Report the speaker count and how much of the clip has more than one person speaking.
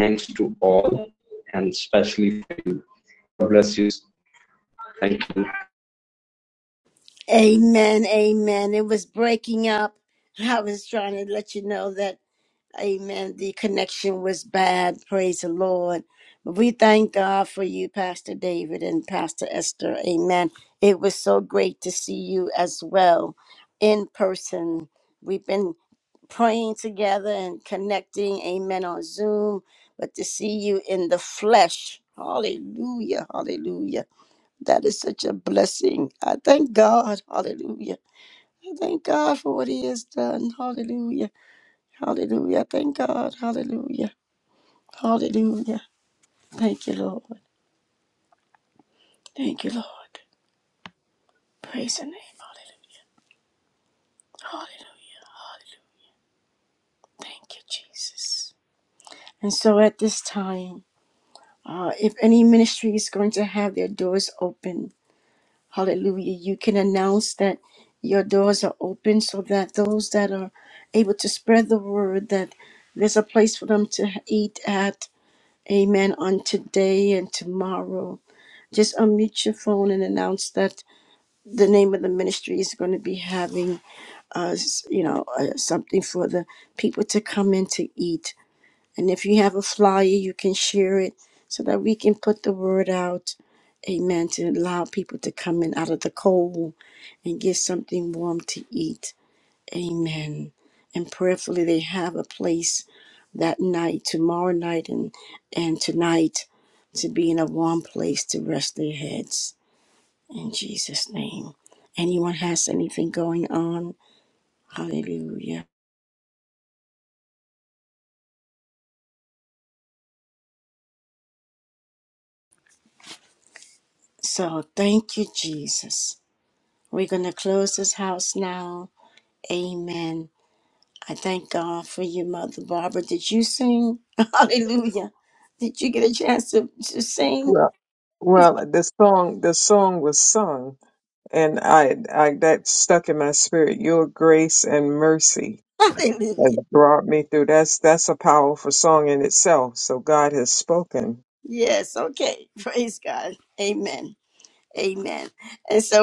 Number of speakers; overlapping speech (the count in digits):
3, under 1%